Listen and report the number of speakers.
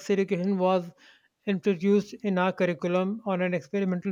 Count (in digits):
1